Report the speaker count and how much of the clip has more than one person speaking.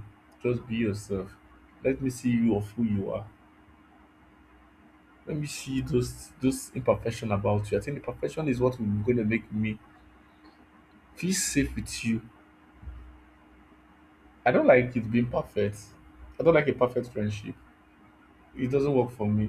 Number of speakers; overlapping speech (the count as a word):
one, no overlap